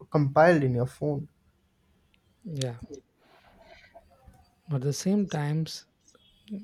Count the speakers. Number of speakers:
two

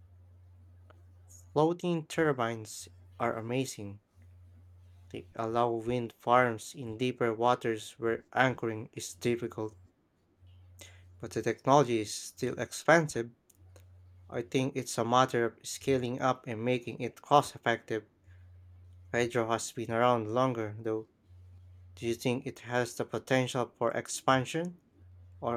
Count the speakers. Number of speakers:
one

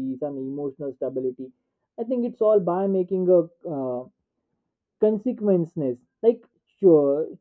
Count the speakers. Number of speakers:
one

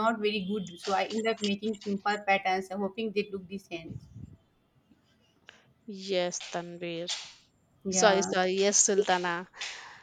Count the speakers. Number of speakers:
two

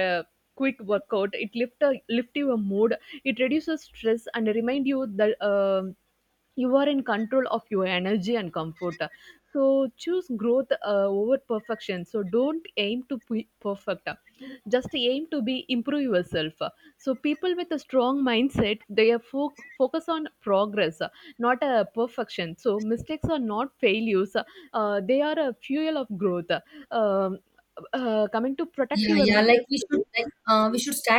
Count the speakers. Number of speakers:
two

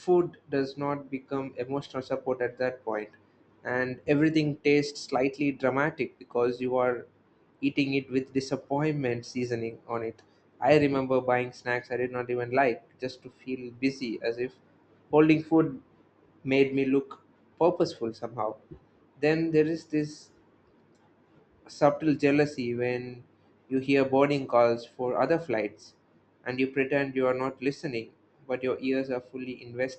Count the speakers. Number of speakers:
one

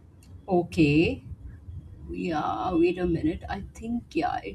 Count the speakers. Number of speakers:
one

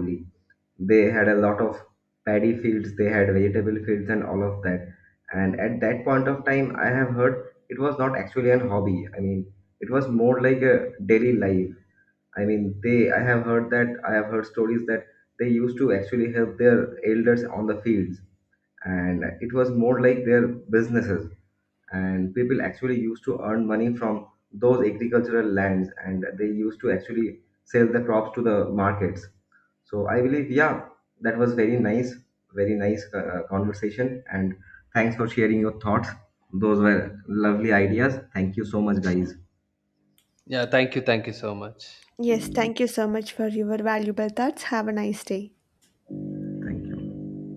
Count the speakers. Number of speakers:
three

